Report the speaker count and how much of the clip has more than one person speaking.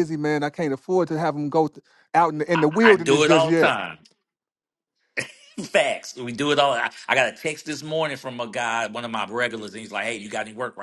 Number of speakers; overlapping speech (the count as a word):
two, about 11%